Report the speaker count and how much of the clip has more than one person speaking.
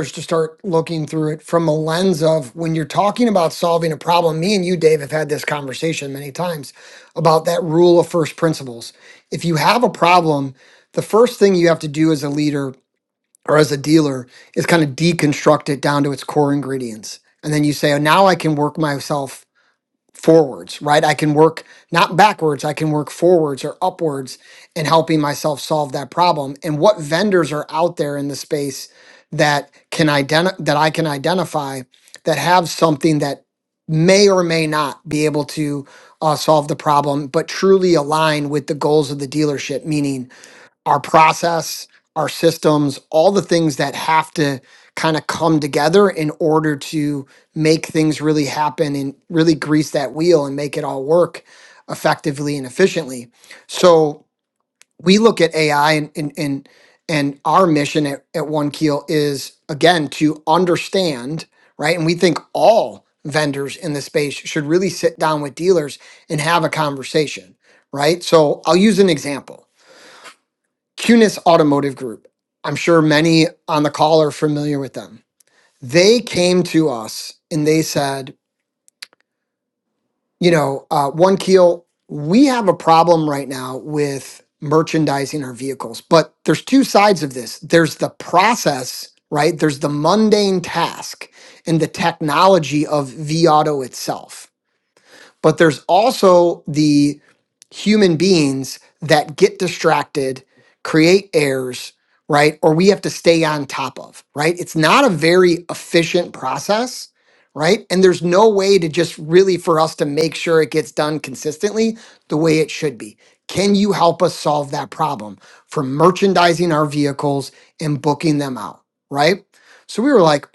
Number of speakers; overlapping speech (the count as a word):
one, no overlap